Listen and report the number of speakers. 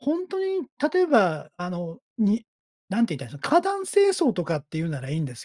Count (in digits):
1